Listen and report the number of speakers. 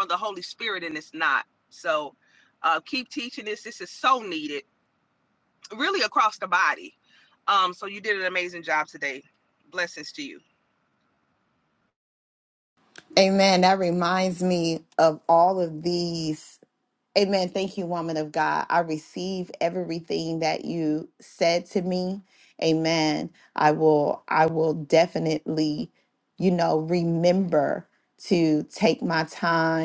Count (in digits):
2